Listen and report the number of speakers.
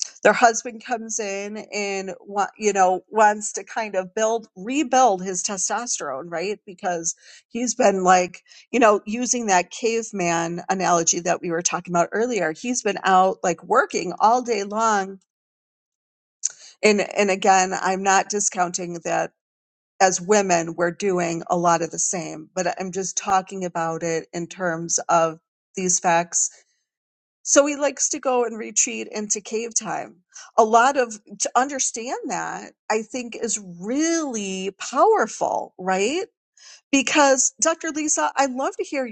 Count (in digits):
1